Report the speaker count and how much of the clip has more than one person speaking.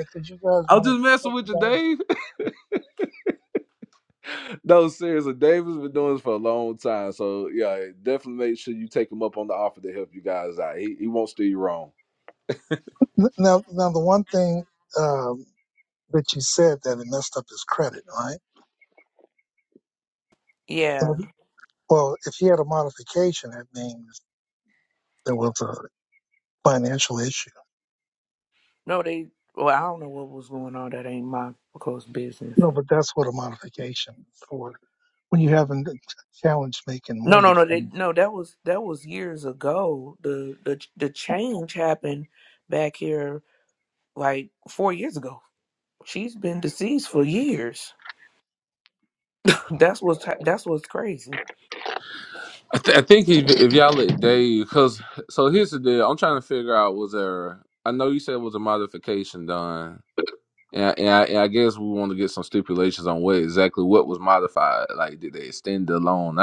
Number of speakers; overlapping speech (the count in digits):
3, about 3%